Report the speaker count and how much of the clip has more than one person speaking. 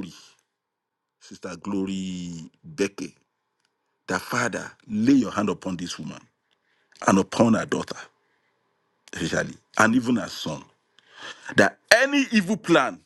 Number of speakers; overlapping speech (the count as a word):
one, no overlap